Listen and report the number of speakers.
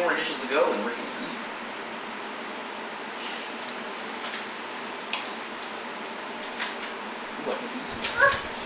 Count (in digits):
1